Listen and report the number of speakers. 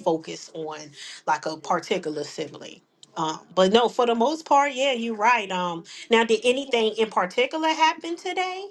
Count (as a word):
one